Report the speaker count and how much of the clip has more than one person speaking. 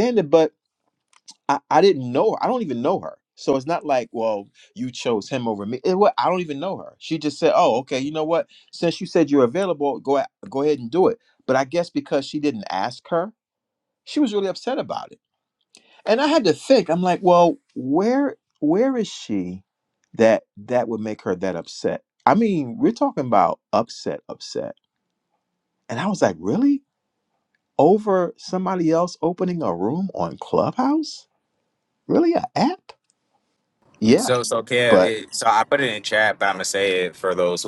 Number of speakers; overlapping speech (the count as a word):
two, about 1%